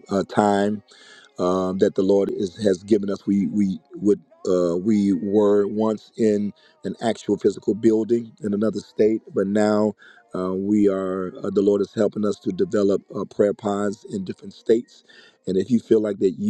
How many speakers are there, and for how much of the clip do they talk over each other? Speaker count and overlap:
one, no overlap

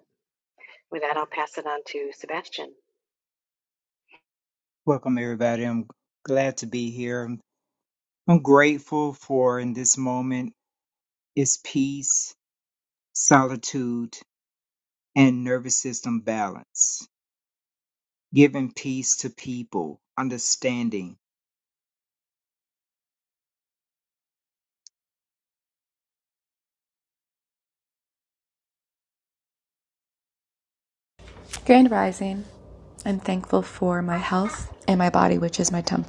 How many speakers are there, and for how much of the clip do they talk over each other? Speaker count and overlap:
three, no overlap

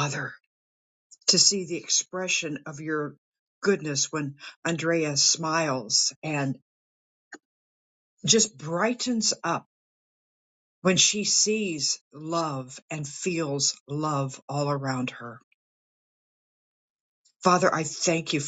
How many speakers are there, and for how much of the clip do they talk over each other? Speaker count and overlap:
one, no overlap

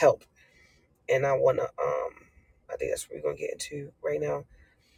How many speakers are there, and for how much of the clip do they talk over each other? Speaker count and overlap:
one, no overlap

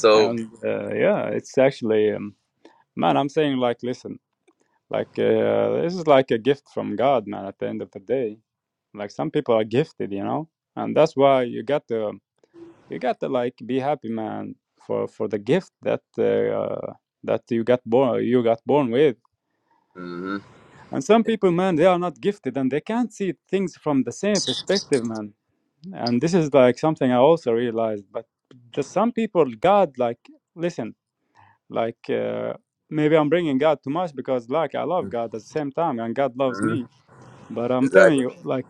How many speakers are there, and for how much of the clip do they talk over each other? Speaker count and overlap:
two, about 2%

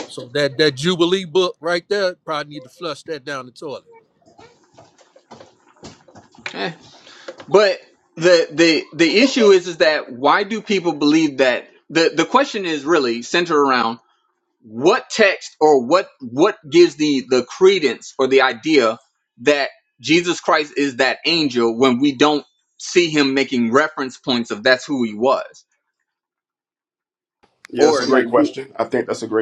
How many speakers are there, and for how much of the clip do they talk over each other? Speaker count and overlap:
three, about 3%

